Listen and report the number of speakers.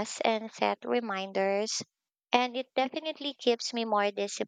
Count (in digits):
1